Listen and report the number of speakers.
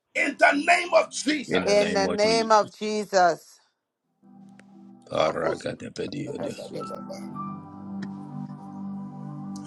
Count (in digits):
3